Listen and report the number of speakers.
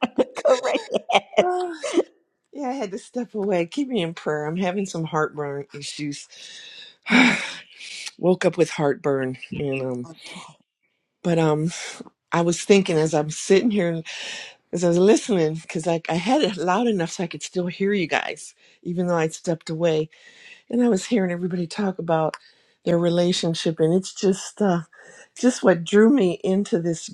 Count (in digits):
2